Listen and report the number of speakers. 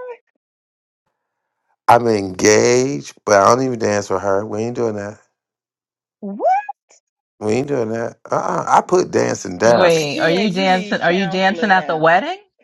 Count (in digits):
3